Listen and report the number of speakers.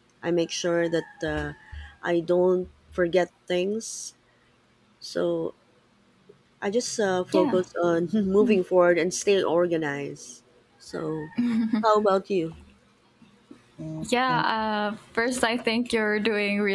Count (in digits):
2